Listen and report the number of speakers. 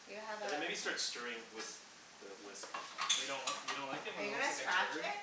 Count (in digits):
3